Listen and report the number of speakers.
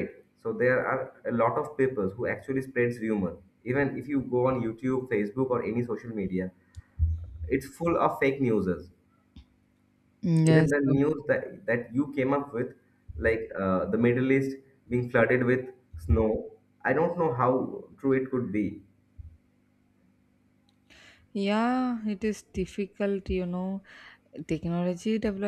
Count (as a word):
two